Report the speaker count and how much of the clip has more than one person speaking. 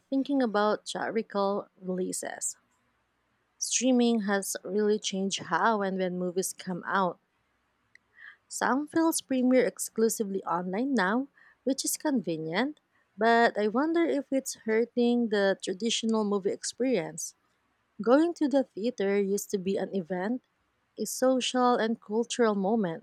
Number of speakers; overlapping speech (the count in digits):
1, no overlap